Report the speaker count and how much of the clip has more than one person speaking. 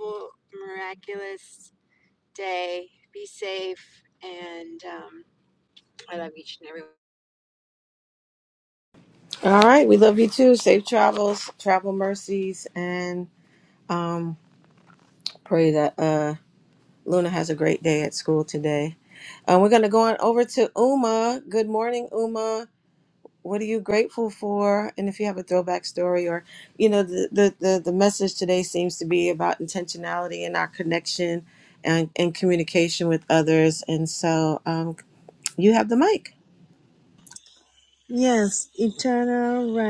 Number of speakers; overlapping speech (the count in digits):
3, no overlap